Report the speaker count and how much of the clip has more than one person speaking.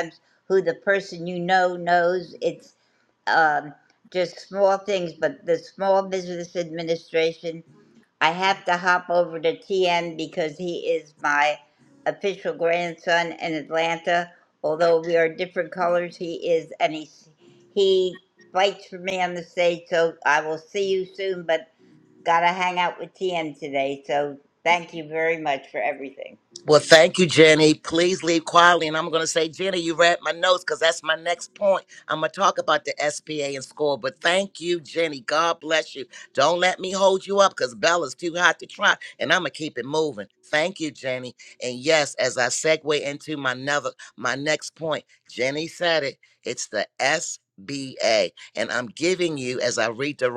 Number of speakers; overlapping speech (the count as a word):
two, no overlap